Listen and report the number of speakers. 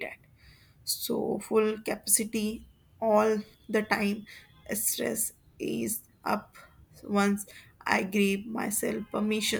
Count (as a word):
one